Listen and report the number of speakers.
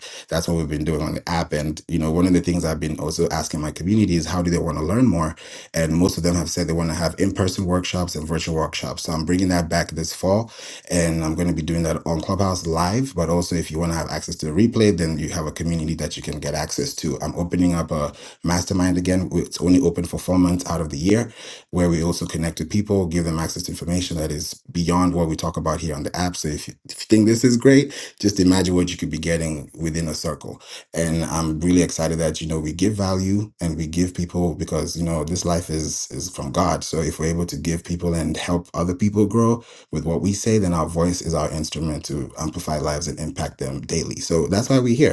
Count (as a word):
one